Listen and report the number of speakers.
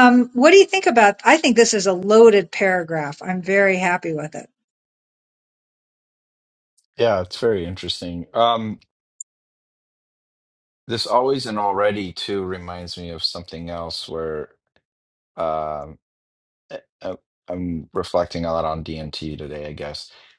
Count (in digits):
2